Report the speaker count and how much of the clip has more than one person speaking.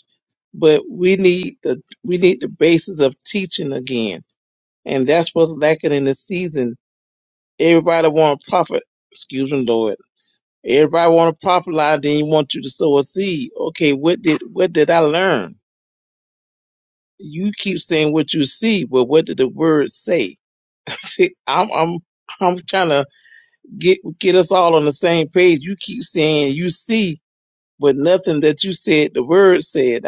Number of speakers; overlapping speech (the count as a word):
one, no overlap